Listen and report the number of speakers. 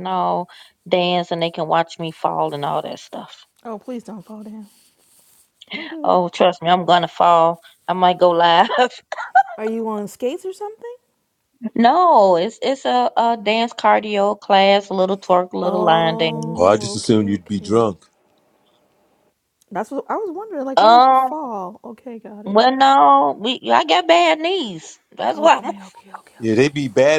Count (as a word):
three